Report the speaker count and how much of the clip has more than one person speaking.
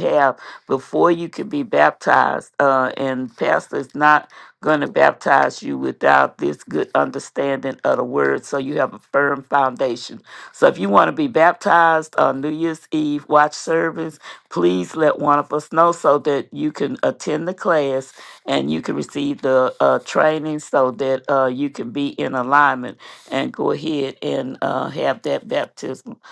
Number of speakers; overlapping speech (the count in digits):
1, no overlap